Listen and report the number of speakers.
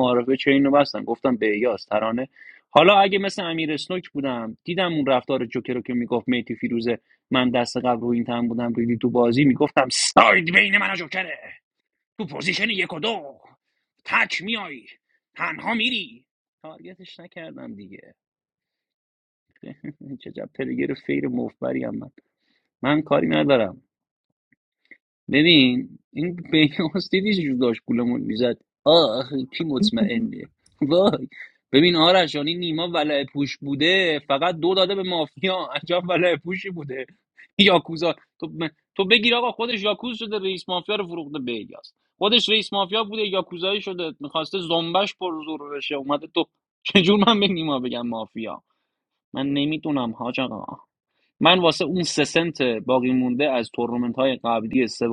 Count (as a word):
one